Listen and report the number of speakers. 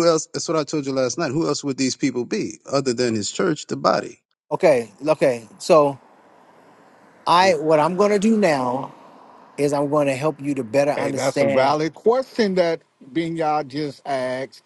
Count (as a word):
three